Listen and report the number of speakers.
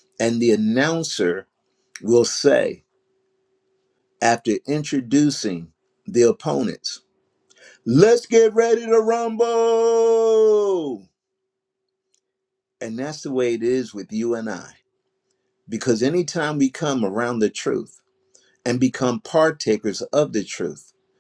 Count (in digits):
1